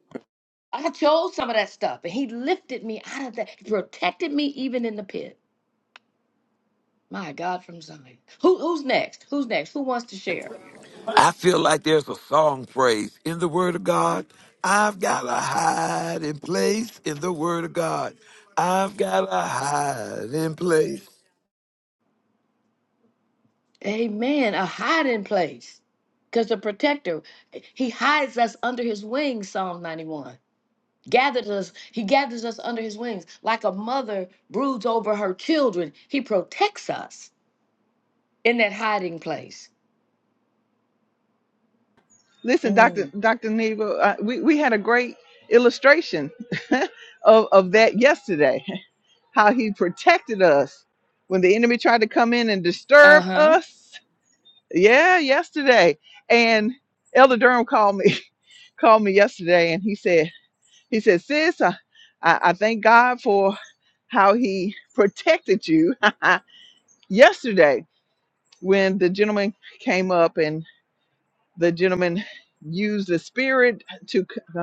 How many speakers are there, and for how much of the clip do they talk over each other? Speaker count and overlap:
three, about 1%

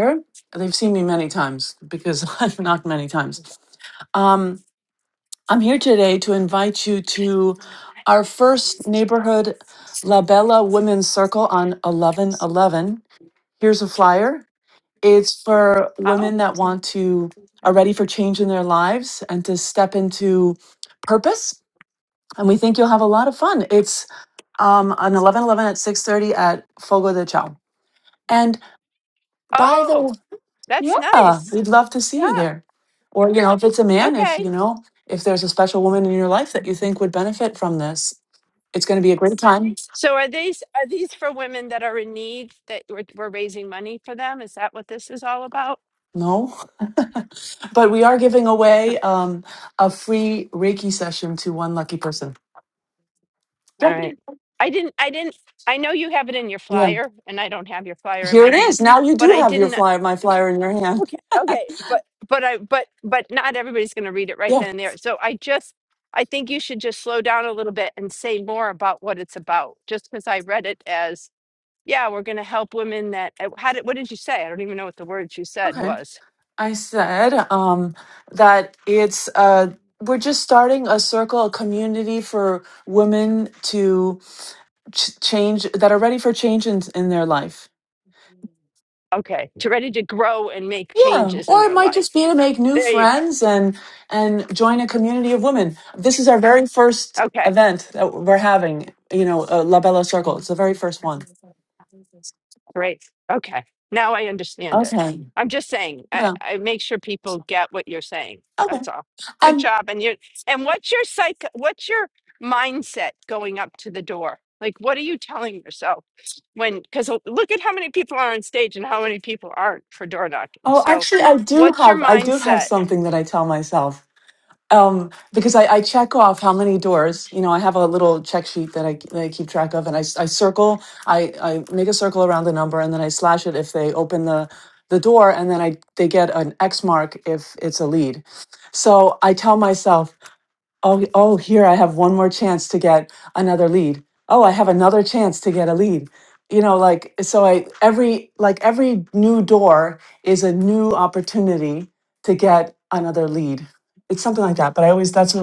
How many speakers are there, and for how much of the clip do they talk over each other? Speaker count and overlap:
two, about 5%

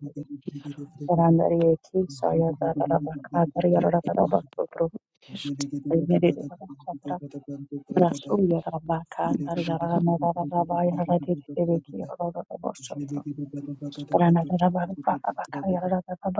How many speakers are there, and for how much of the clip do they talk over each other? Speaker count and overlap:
two, about 6%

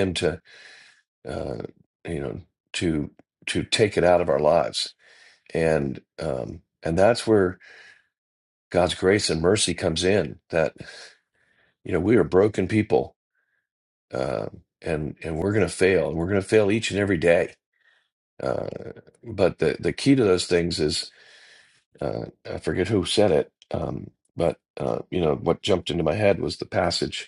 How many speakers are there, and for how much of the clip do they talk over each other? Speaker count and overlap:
one, no overlap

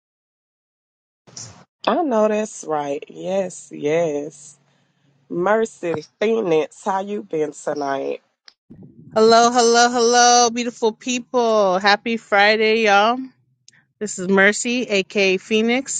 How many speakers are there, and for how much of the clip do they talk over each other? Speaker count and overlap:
two, no overlap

